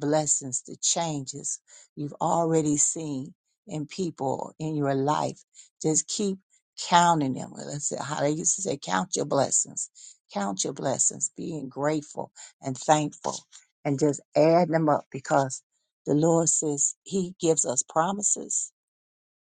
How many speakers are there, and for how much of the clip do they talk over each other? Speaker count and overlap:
1, no overlap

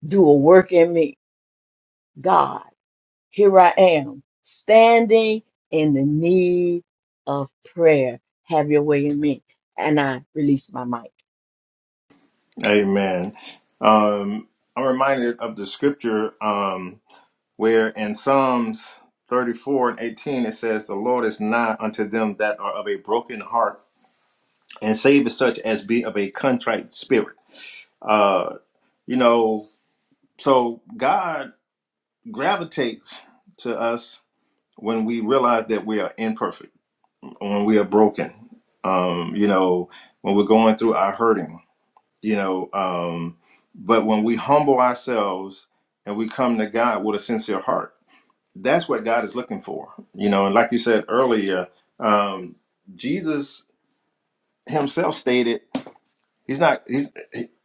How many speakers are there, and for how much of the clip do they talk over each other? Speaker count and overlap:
2, no overlap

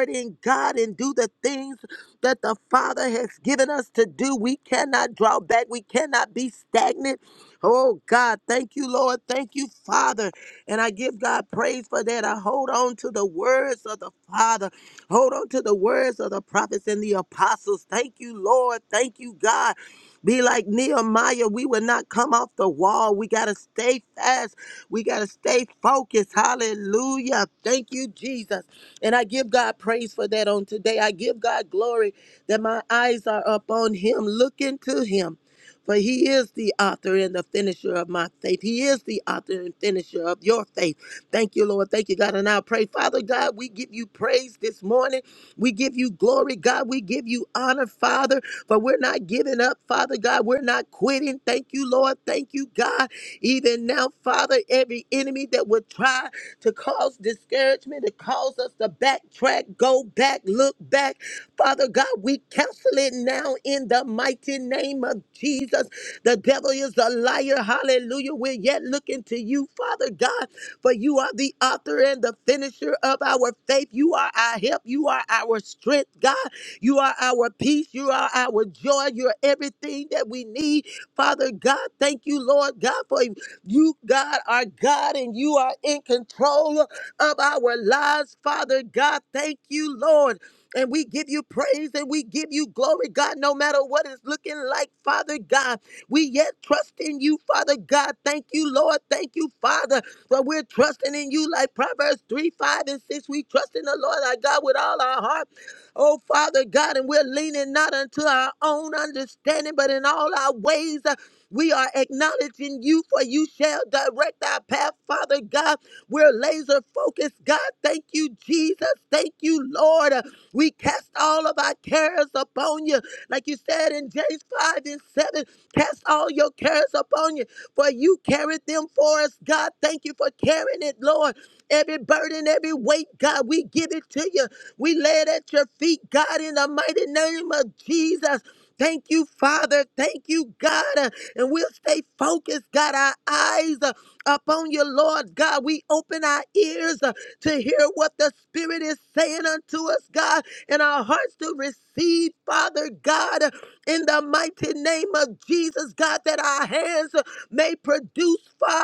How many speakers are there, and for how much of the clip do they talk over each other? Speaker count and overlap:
1, no overlap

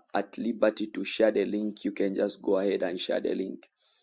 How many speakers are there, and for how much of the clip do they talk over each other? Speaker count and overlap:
1, no overlap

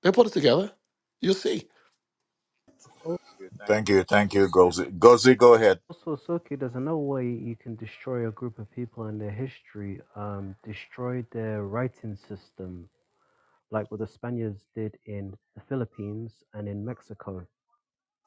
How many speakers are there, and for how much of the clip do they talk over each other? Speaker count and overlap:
3, no overlap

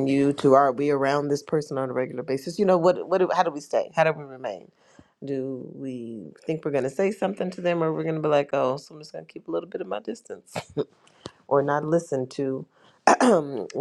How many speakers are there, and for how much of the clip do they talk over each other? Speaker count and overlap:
1, no overlap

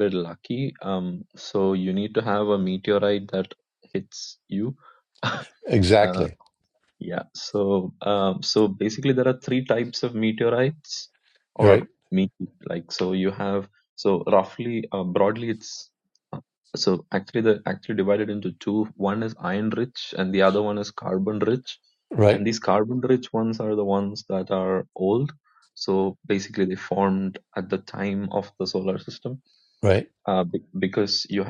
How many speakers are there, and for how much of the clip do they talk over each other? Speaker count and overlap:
2, about 1%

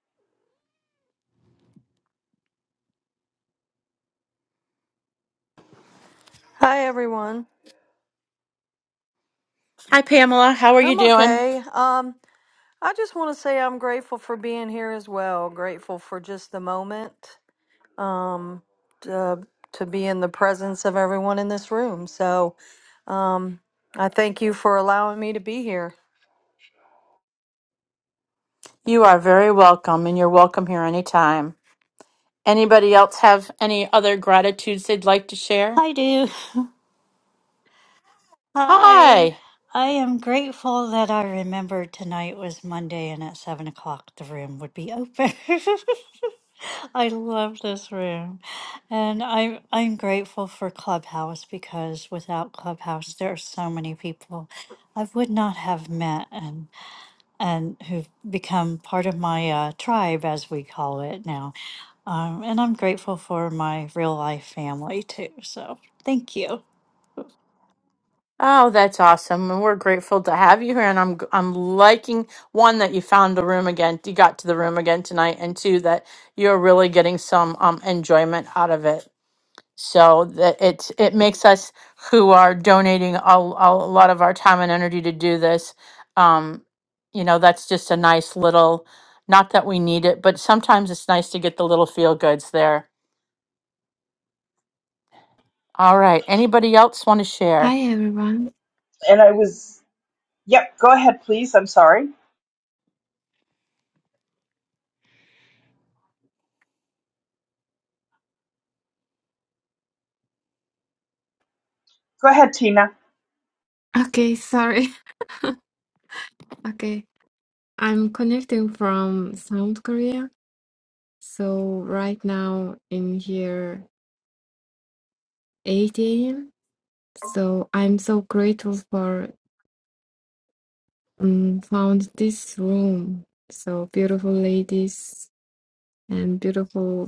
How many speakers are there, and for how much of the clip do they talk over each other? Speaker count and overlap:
5, about 1%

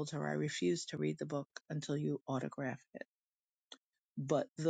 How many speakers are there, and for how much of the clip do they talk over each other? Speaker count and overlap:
1, no overlap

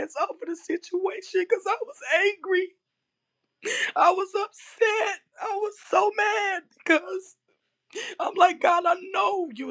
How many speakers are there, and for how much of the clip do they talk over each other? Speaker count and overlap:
1, no overlap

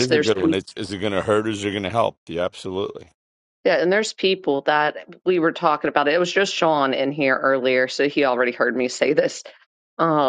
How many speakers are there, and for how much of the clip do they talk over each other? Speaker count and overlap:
2, about 3%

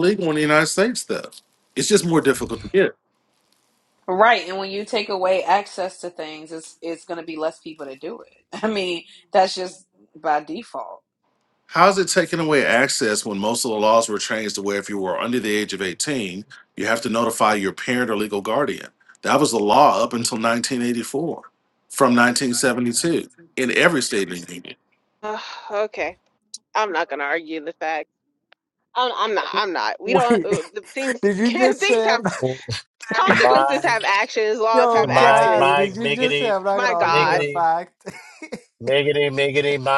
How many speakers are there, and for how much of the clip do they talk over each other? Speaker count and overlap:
5, about 12%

